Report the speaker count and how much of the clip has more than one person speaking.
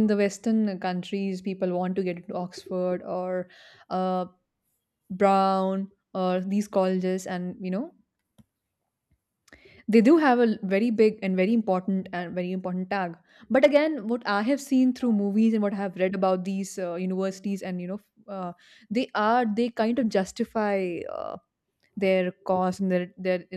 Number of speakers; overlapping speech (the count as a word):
one, no overlap